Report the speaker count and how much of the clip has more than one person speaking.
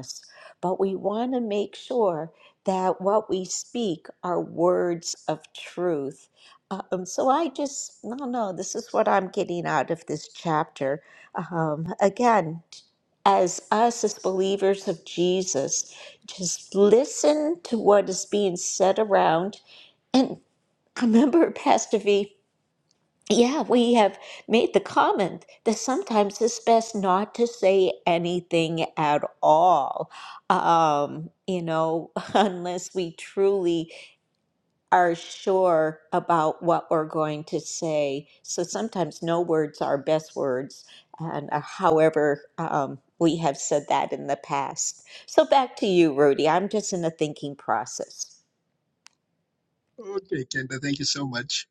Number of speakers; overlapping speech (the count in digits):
2, no overlap